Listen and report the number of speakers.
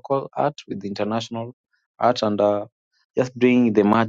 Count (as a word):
one